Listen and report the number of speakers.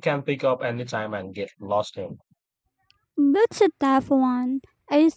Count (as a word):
two